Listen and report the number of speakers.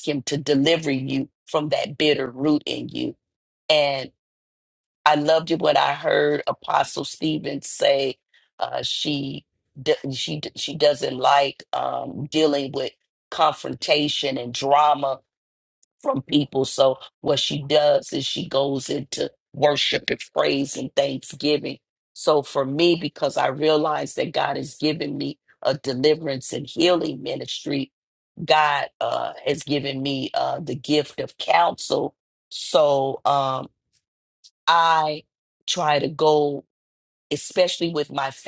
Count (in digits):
1